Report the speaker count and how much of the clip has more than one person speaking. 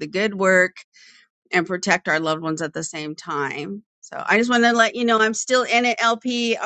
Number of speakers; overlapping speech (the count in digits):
1, no overlap